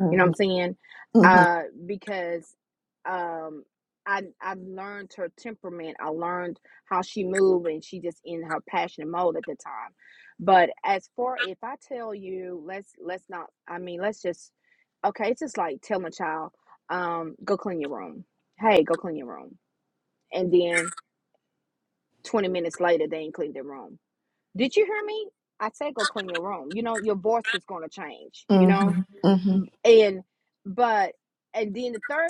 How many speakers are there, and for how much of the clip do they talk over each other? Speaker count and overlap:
two, about 3%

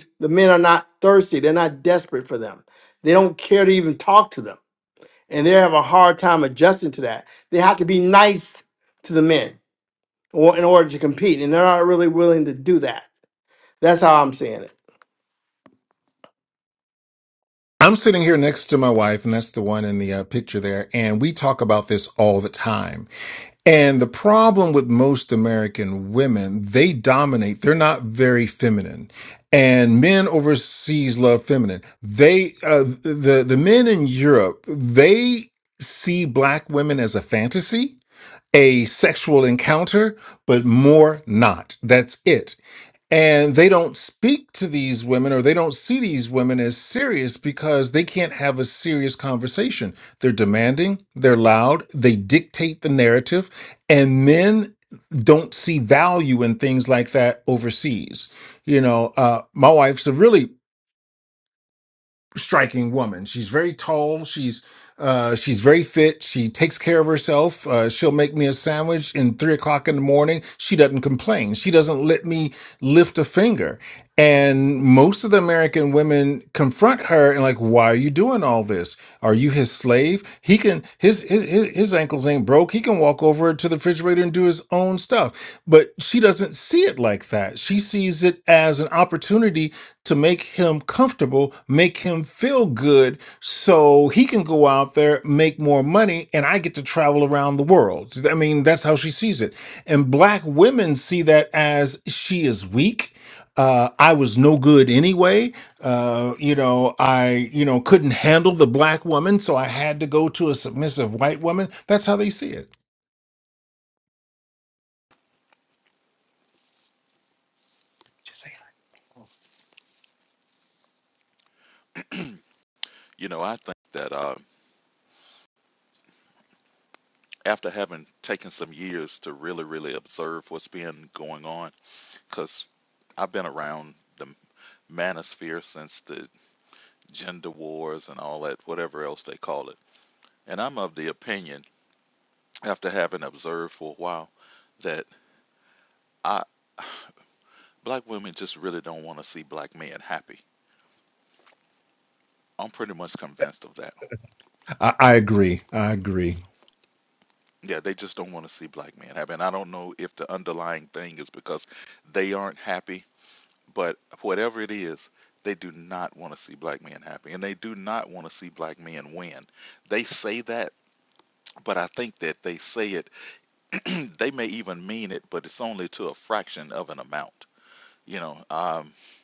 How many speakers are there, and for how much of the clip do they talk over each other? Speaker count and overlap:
three, no overlap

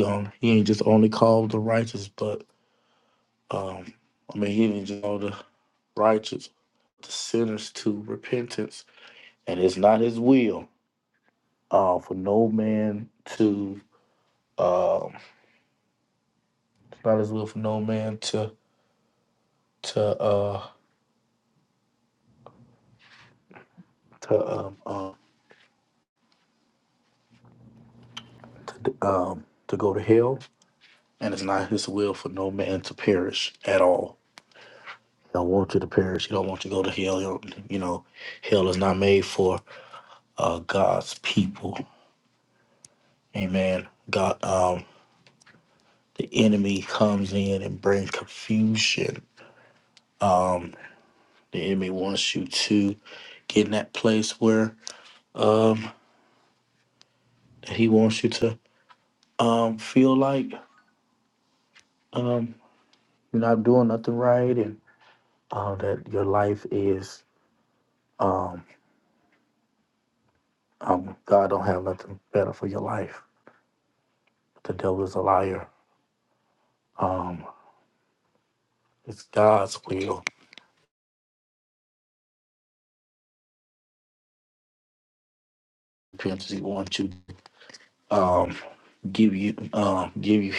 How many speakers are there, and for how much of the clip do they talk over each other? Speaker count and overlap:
one, no overlap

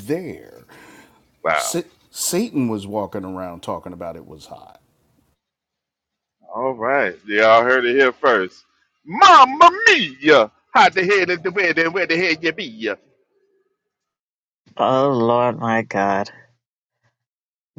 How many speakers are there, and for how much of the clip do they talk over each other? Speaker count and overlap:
three, about 1%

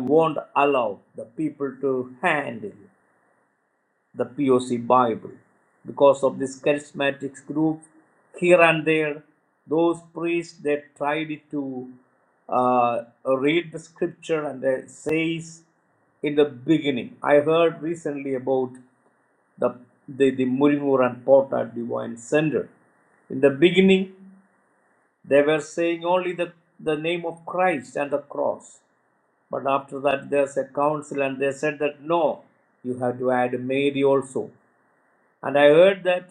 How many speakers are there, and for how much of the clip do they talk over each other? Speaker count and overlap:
one, no overlap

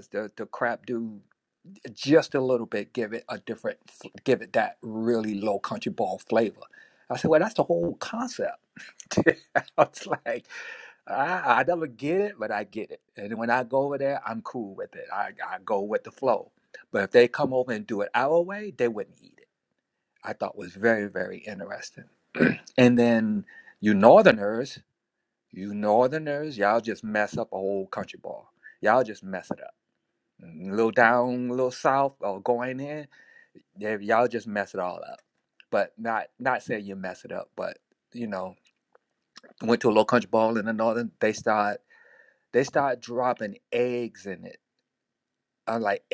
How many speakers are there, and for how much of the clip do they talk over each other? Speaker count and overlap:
one, no overlap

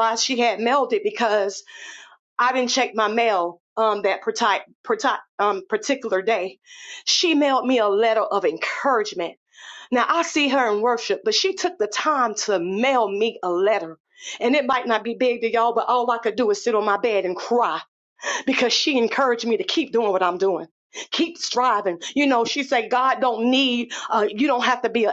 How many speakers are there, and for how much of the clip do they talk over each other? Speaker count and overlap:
one, no overlap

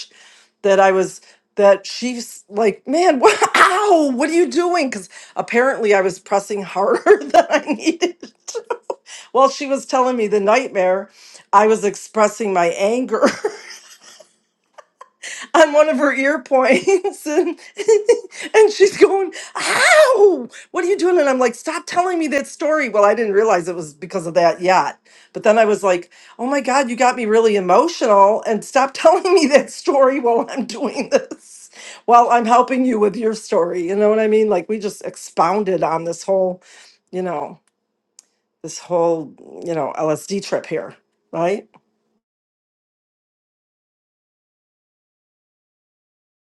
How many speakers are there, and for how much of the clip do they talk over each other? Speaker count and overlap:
one, no overlap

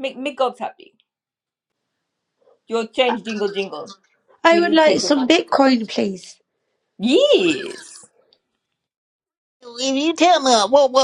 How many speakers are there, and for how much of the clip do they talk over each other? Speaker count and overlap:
three, about 8%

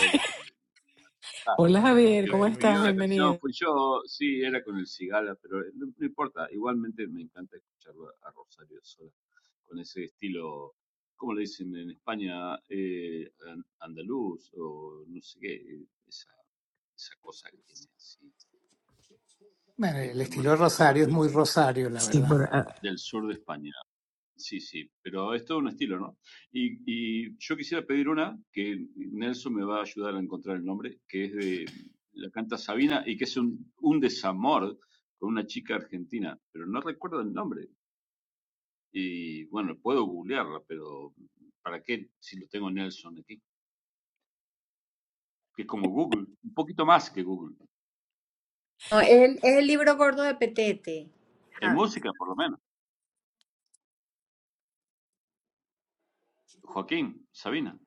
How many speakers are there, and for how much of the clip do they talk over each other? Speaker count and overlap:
four, about 5%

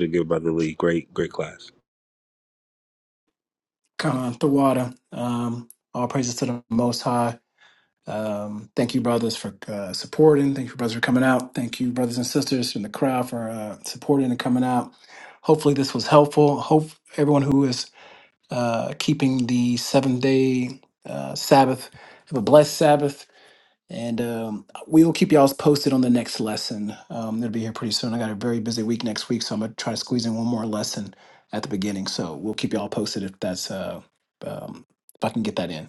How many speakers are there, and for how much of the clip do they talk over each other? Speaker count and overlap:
two, no overlap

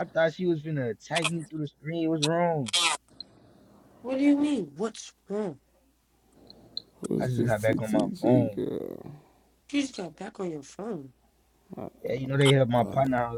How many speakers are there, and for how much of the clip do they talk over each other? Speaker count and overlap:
three, about 10%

